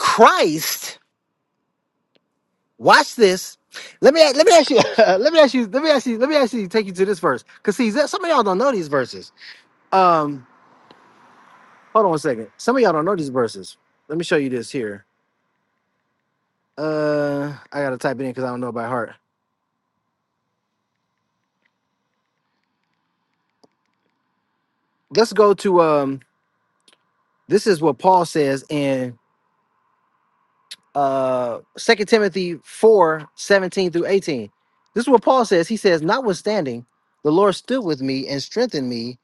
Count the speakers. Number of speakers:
1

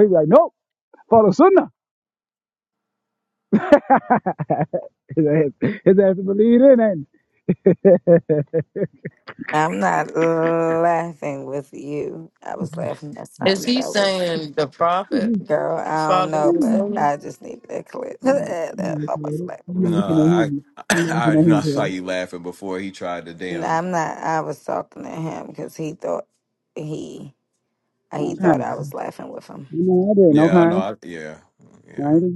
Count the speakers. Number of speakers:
4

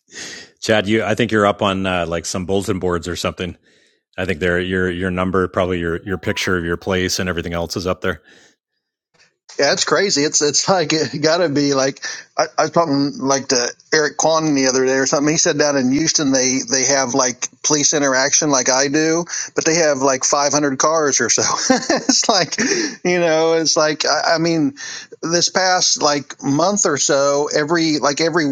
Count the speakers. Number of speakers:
2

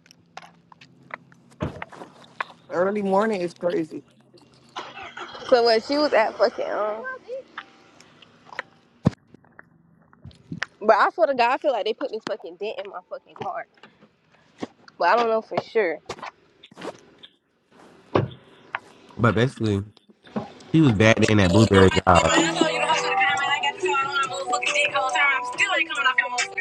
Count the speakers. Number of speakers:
3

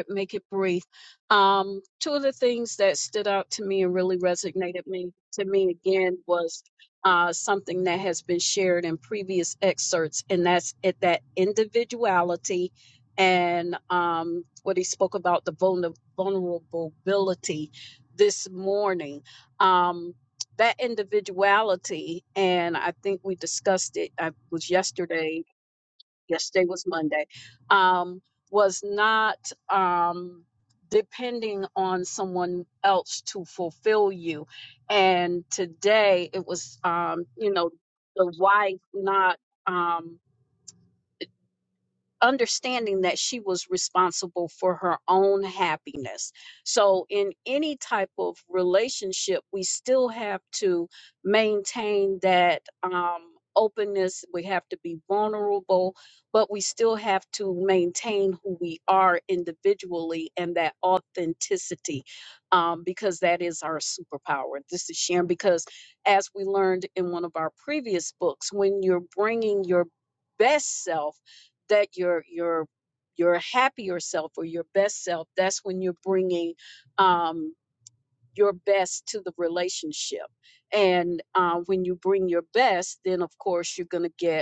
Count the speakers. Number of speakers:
1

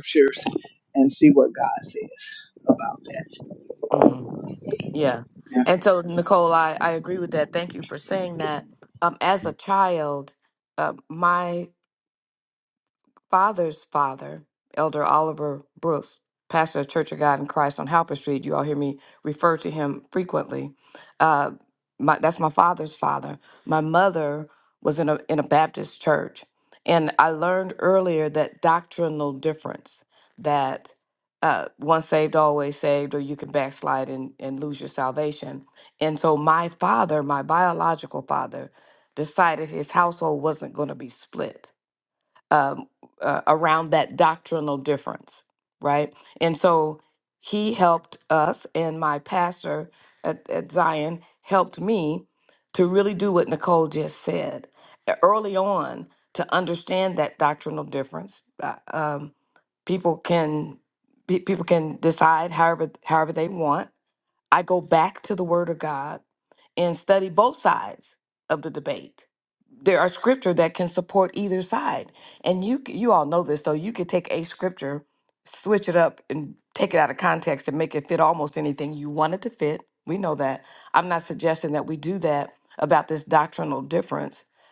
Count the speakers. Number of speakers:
2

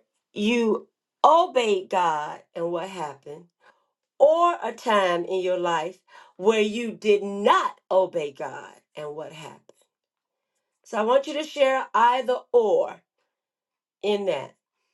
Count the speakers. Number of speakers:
1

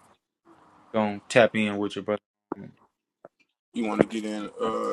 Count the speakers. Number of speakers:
2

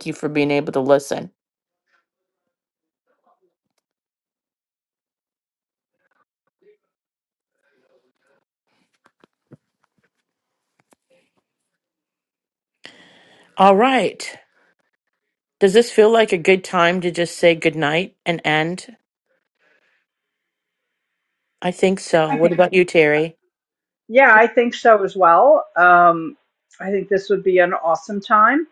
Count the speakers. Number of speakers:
2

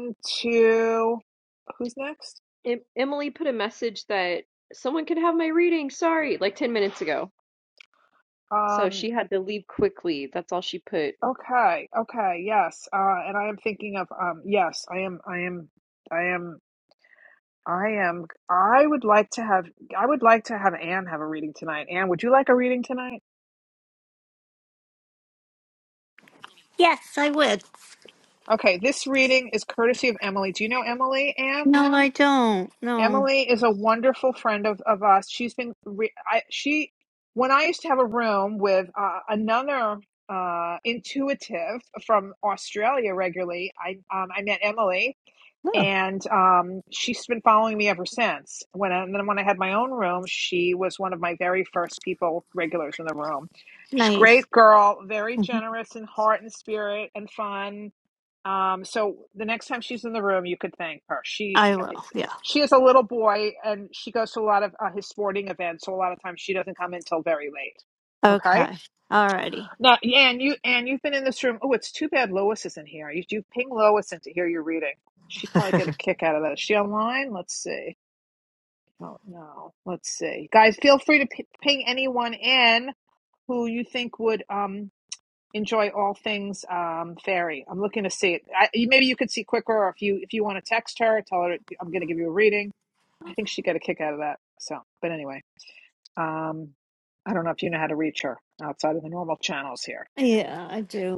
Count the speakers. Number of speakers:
3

